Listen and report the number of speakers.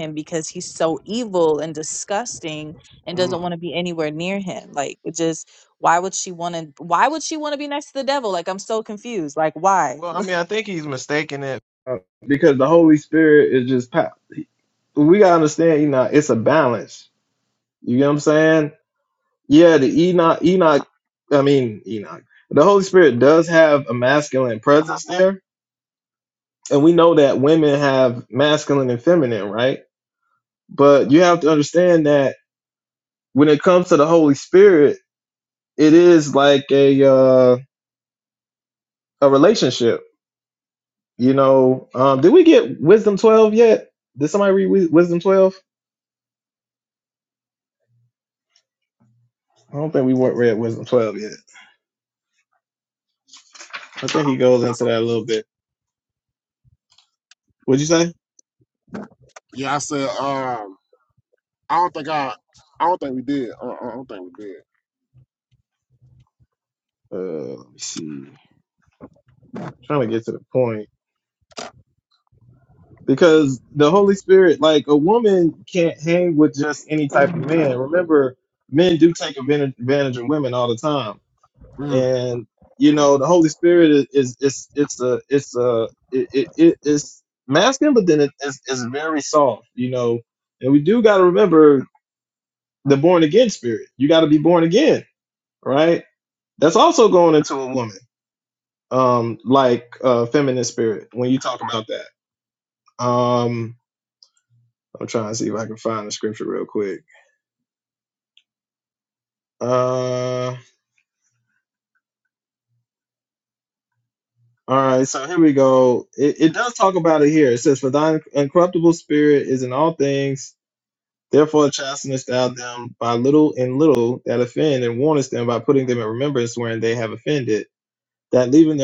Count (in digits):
3